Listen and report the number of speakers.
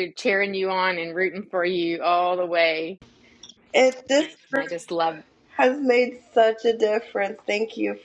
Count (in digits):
2